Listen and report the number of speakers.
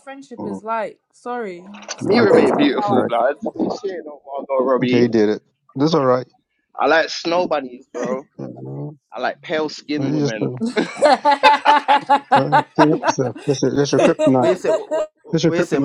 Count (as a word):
four